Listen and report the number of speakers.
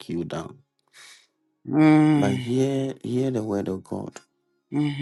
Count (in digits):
2